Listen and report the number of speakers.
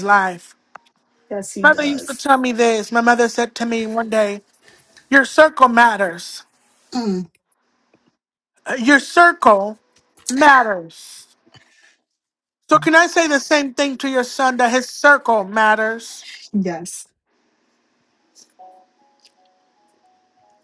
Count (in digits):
2